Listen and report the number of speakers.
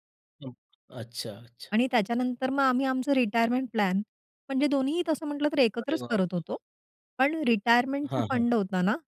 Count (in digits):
2